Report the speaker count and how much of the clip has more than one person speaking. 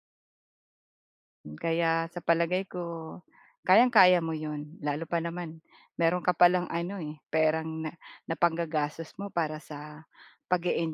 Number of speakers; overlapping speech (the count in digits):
1, no overlap